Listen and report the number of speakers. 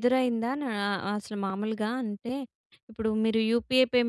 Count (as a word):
one